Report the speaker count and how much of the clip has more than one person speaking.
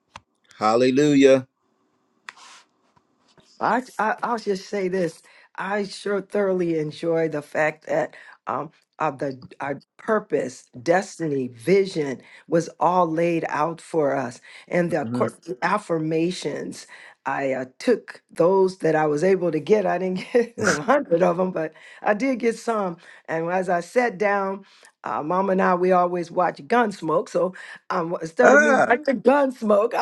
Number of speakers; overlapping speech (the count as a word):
two, about 3%